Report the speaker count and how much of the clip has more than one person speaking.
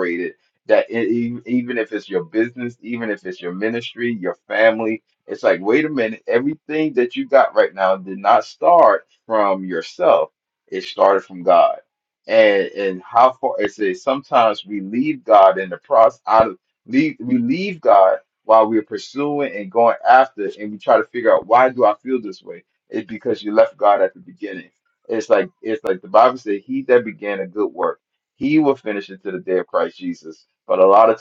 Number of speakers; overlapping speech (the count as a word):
one, no overlap